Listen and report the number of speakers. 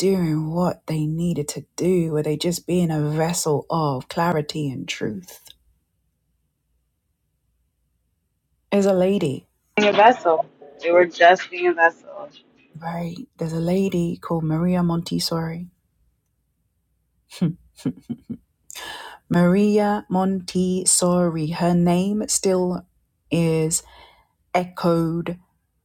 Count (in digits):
2